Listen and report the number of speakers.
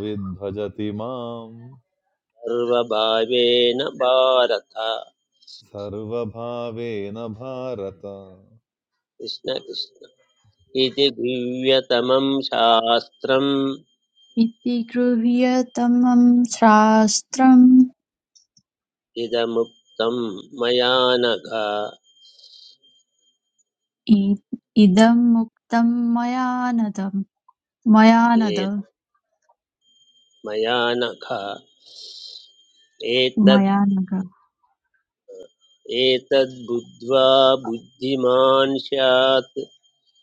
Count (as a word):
three